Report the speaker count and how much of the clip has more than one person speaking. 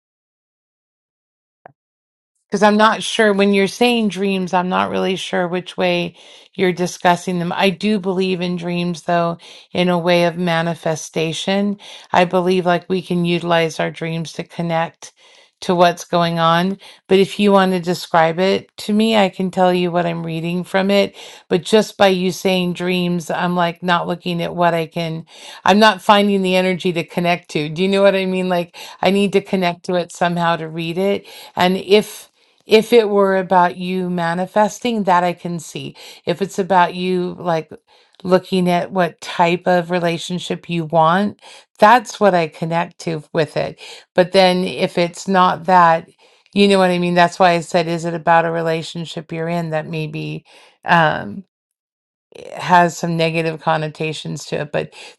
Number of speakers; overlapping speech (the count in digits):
1, no overlap